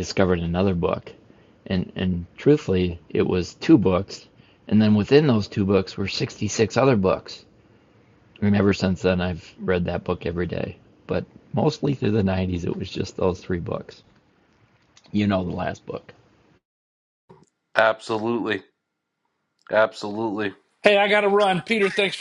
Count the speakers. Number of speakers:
3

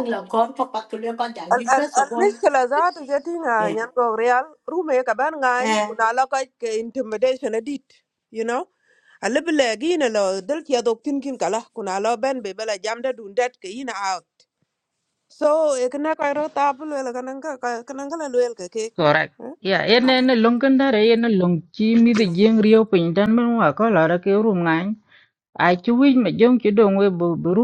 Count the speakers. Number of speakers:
3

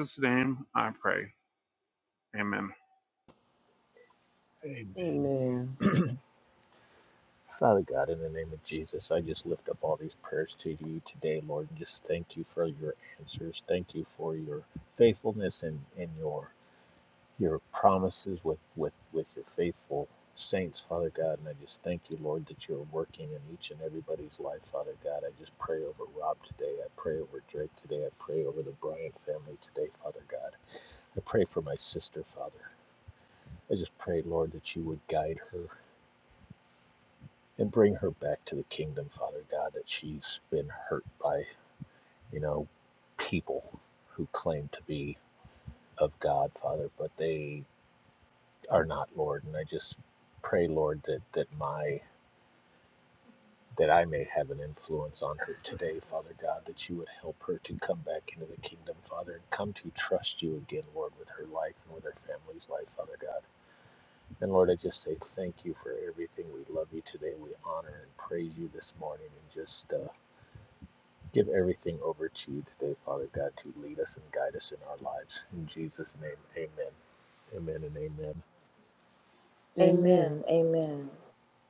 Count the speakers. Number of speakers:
4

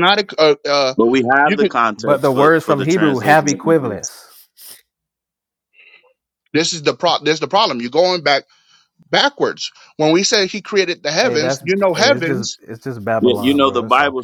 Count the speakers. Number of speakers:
3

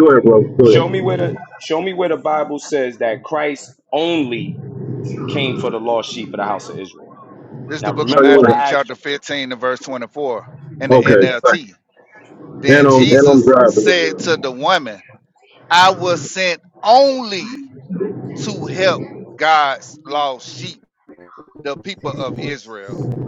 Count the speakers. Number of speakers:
3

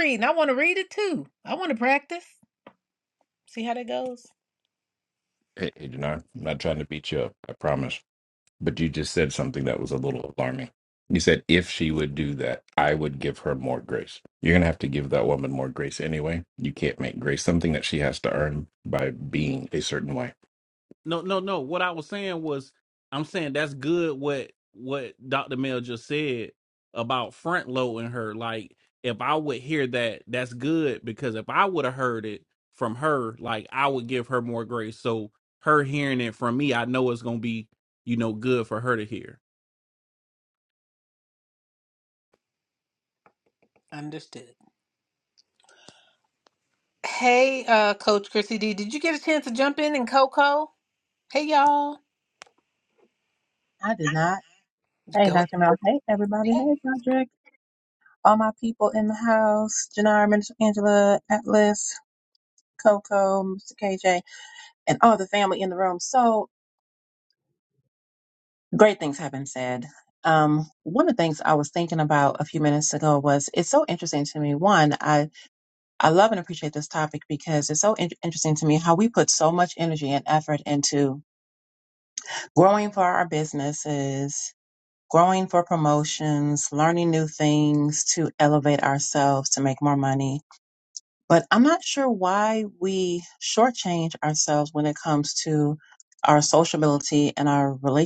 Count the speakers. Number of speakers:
4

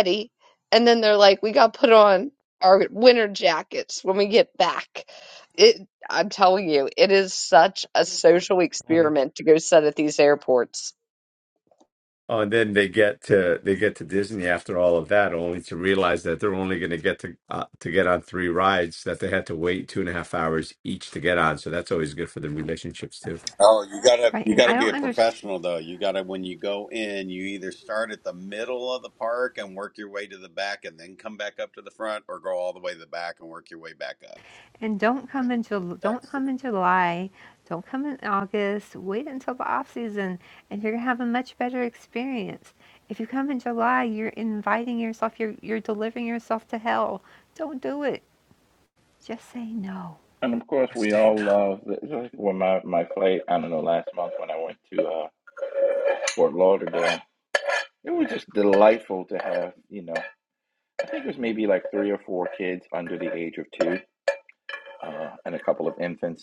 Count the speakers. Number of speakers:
5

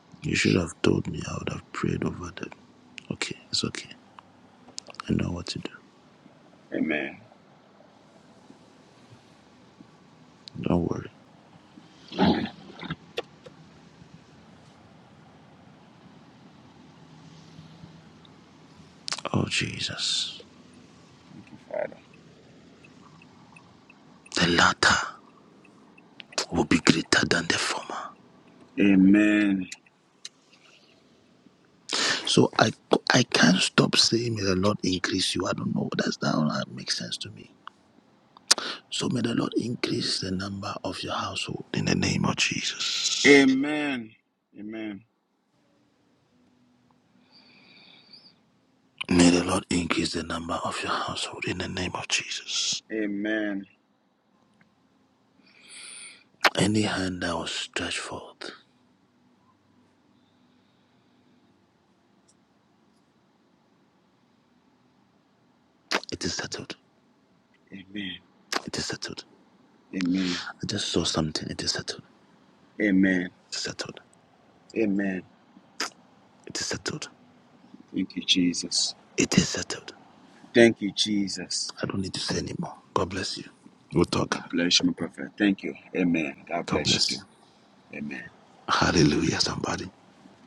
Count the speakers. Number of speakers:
2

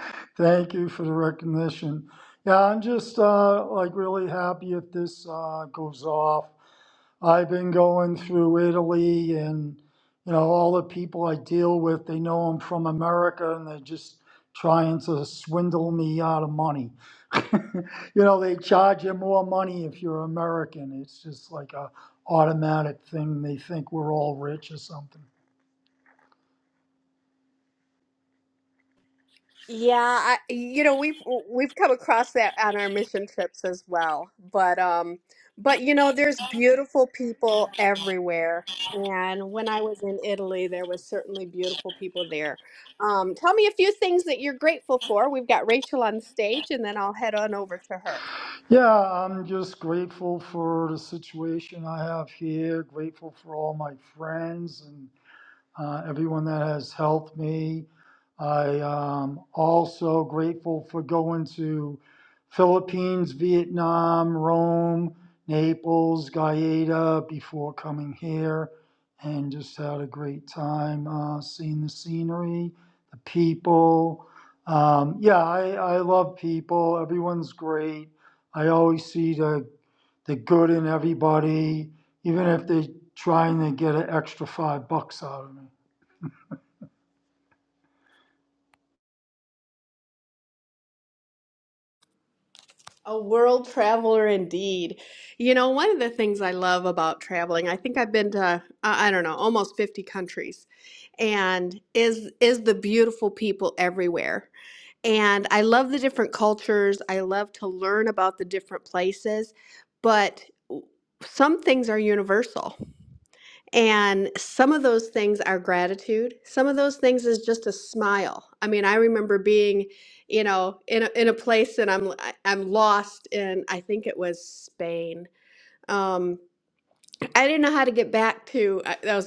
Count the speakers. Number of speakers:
2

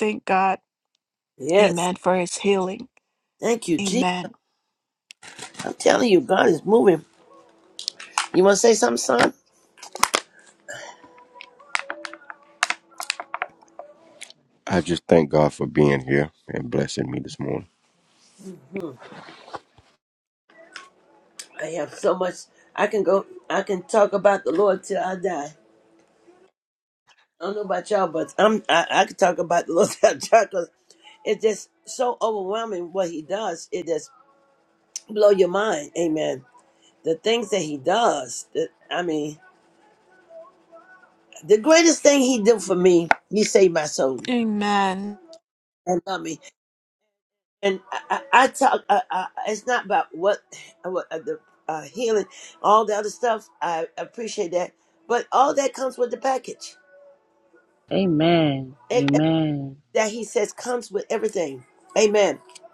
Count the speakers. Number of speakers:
4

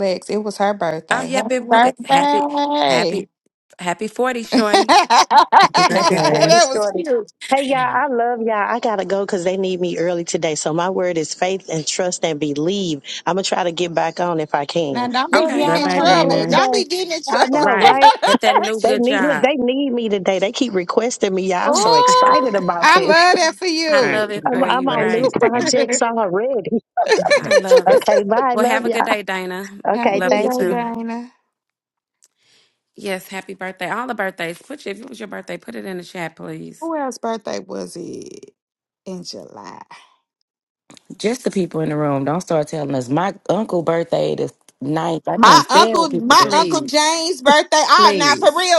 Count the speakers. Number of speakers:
4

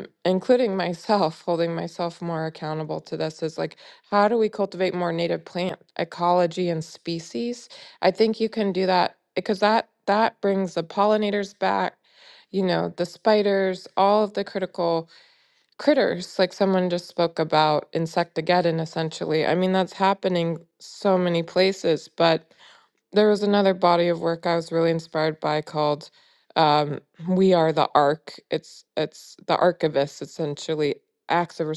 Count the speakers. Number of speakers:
1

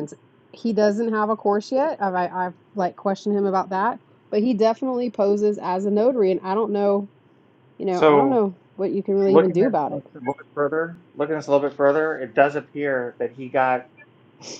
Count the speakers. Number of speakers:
2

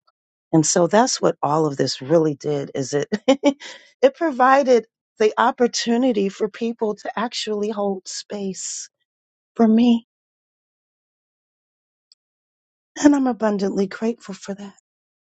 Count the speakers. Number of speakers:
1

